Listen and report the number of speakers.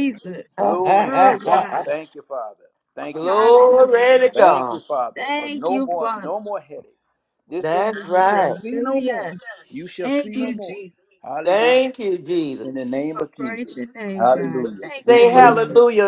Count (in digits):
3